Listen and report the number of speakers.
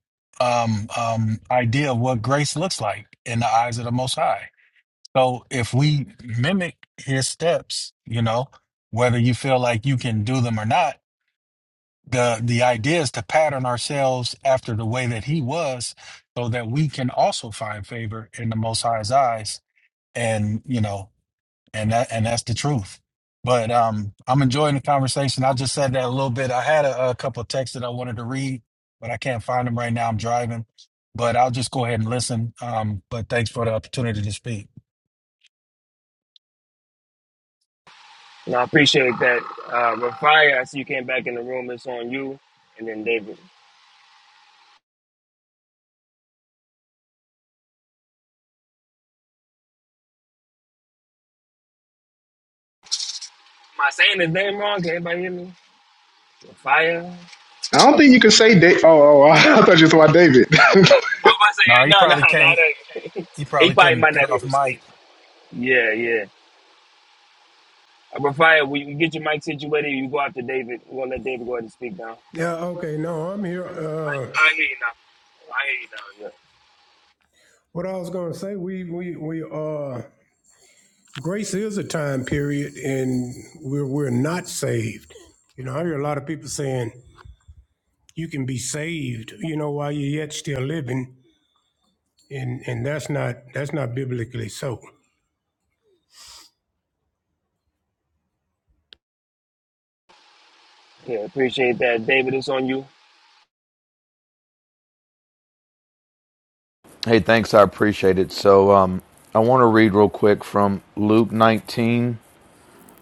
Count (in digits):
5